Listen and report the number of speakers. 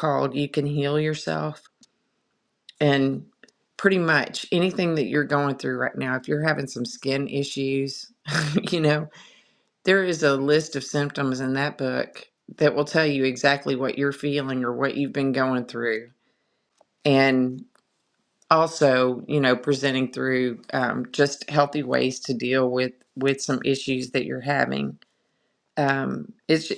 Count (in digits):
1